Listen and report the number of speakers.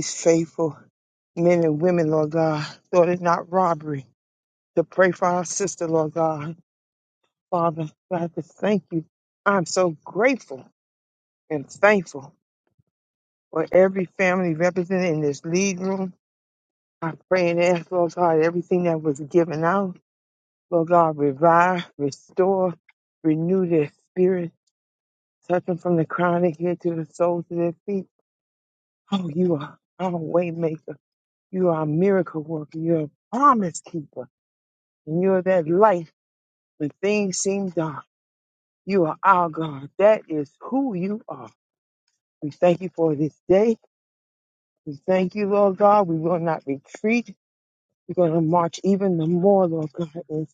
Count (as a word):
one